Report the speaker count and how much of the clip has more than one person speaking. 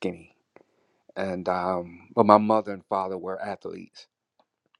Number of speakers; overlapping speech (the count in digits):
1, no overlap